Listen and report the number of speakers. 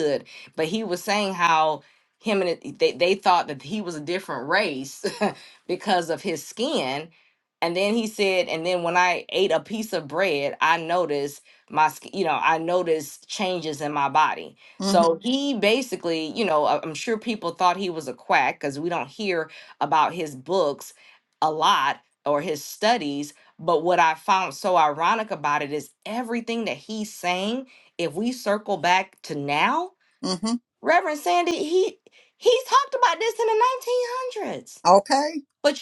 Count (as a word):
two